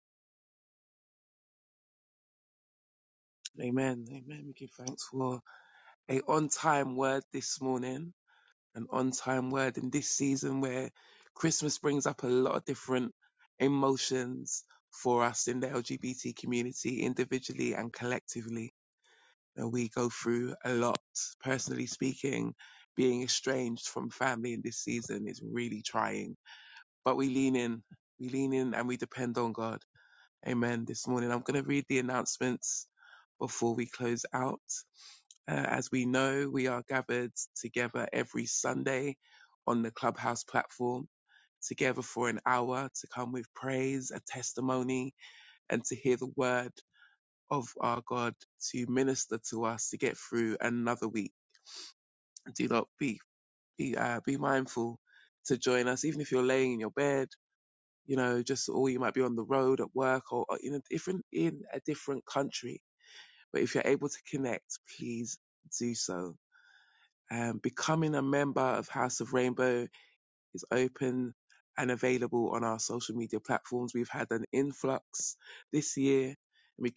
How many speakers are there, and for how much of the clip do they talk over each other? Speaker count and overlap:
1, no overlap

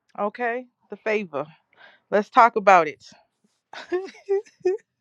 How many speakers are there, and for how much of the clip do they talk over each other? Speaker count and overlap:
1, no overlap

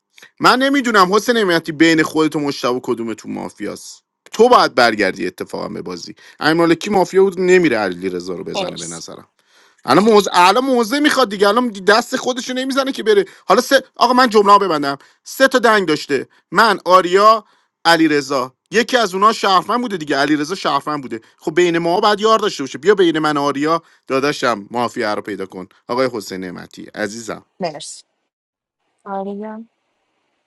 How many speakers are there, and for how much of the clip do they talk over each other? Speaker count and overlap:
2, about 1%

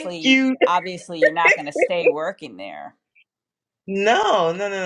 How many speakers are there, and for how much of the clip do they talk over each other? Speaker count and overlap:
2, about 12%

